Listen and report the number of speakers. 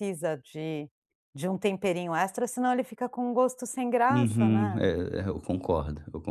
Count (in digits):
2